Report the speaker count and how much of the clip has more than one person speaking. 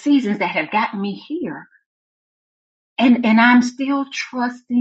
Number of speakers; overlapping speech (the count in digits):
1, no overlap